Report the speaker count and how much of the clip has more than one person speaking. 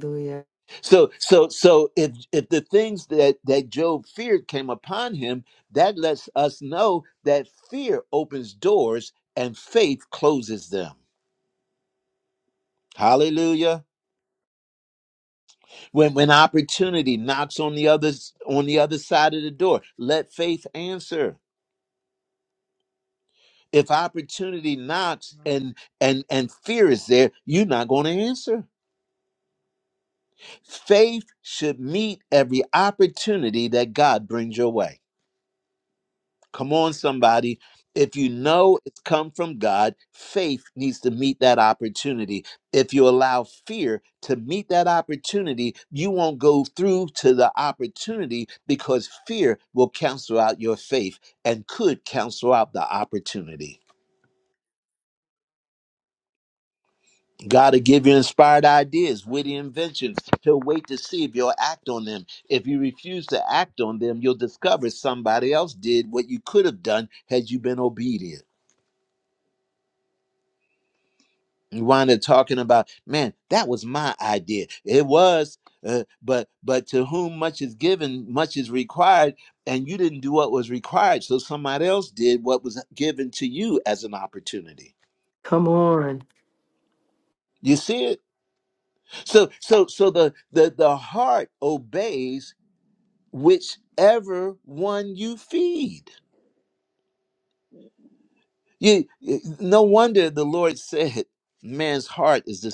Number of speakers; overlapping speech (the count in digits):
2, no overlap